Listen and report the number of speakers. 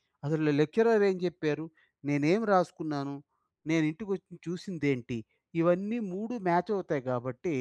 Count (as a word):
one